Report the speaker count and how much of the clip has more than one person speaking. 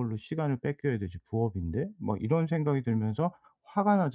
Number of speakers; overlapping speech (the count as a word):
one, no overlap